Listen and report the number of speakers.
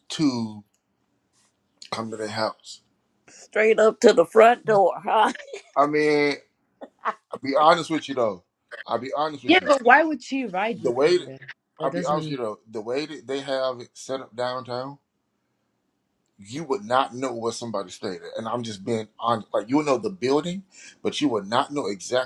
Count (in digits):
3